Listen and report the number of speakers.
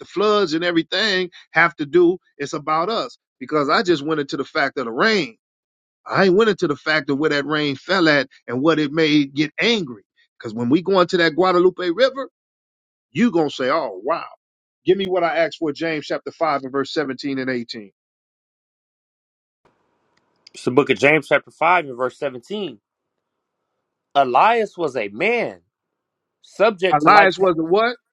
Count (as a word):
two